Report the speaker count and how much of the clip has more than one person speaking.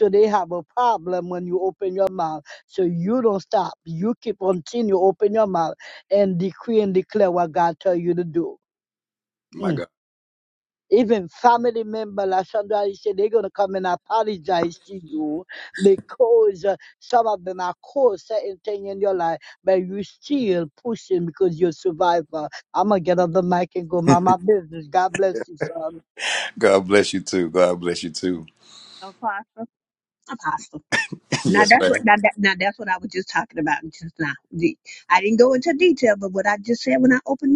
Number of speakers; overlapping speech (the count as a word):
three, about 2%